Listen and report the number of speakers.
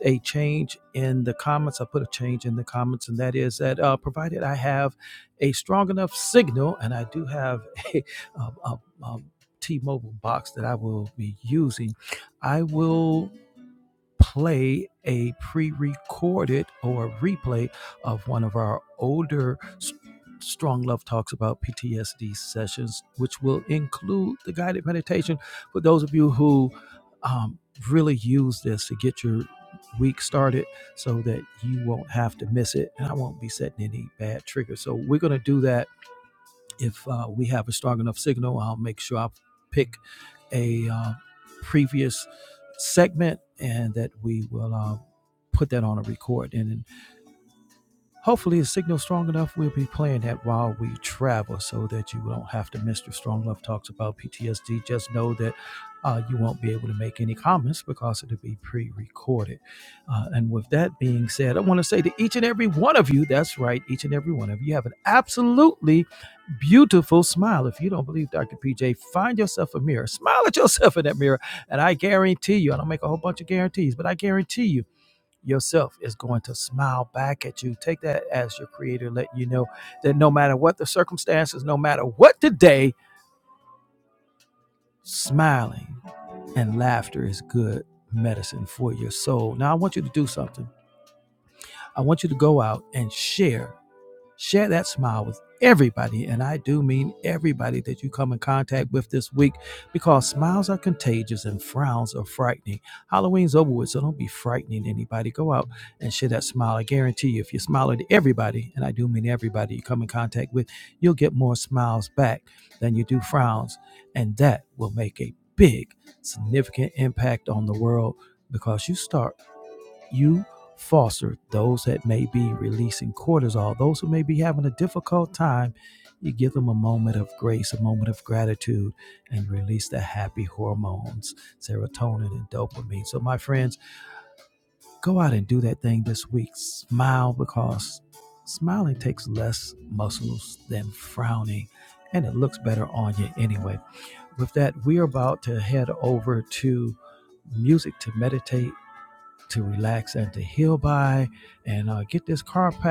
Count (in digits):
1